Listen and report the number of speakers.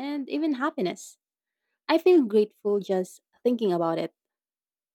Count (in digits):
1